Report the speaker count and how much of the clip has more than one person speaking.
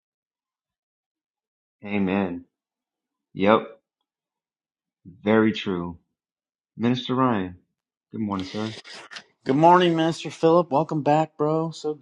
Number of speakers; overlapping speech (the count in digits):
2, no overlap